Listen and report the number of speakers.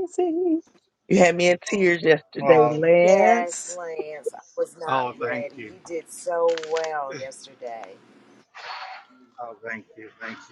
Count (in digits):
3